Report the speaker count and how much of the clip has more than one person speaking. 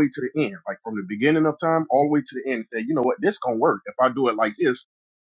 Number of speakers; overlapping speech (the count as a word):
one, no overlap